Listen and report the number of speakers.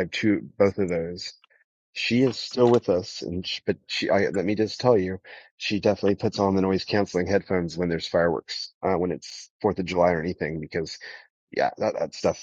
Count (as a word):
one